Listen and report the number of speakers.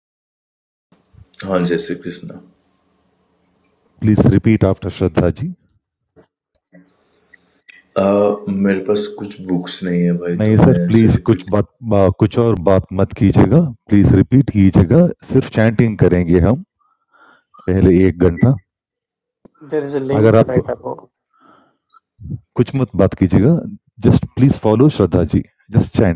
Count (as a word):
three